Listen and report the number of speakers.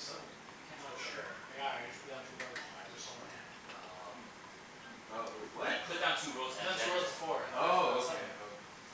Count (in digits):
3